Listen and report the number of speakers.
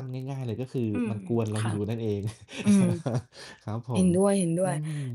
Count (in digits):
2